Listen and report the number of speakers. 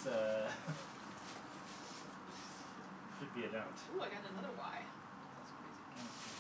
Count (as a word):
two